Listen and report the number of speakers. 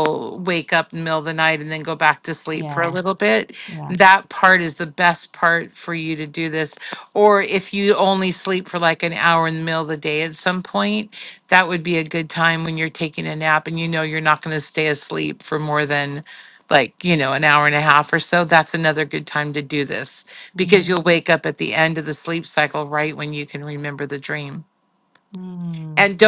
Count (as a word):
two